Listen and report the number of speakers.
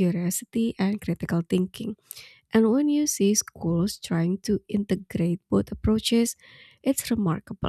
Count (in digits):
1